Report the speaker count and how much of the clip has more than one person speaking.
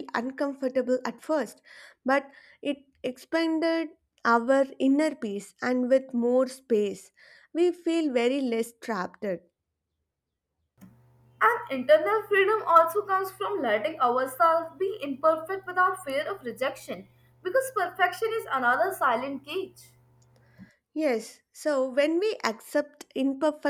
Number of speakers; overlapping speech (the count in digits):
2, no overlap